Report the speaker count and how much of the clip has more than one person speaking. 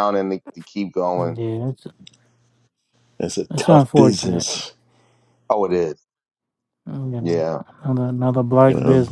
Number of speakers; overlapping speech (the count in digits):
3, about 17%